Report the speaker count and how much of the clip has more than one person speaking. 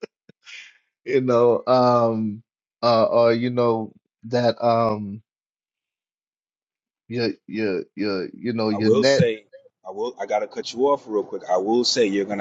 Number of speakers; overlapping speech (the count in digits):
2, about 4%